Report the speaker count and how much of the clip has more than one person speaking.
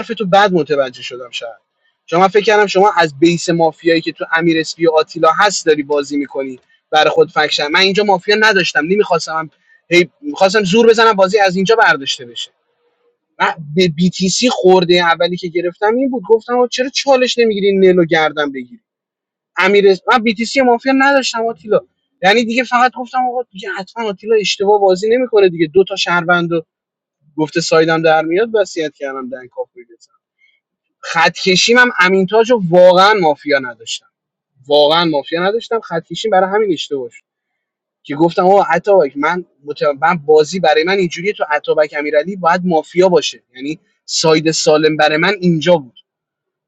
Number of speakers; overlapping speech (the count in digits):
1, no overlap